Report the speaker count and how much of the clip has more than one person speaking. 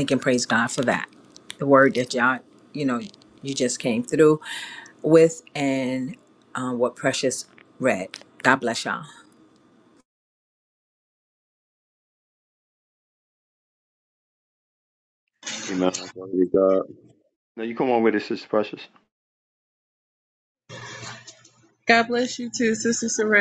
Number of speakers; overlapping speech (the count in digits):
3, no overlap